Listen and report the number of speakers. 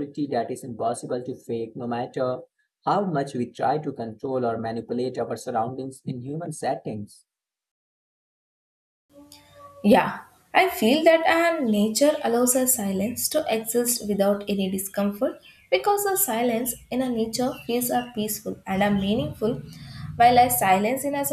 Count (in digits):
2